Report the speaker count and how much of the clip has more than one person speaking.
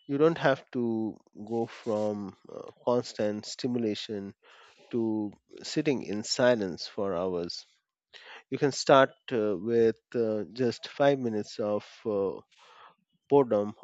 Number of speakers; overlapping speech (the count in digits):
1, no overlap